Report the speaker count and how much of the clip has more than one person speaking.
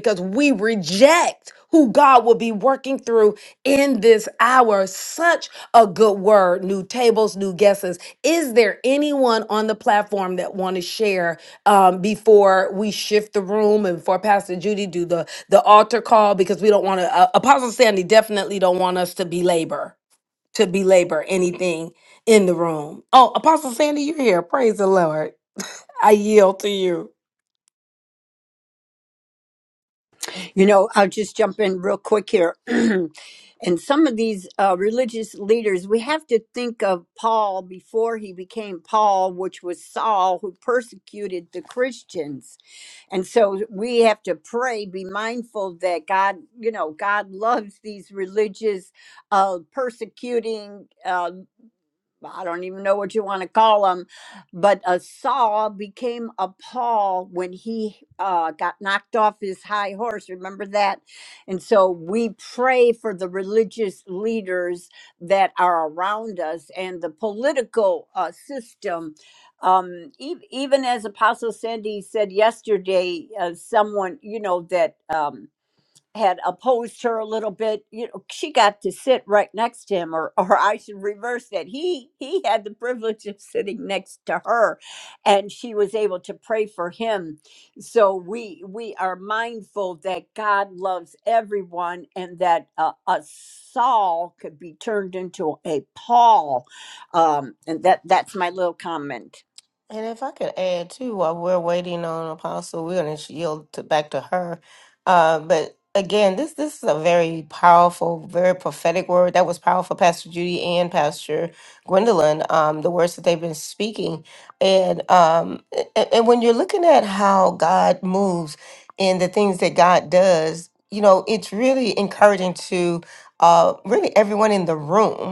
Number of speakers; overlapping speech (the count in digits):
3, no overlap